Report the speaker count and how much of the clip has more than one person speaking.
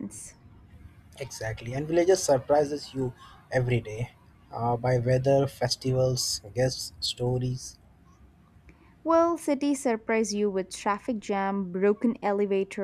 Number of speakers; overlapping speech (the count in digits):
2, no overlap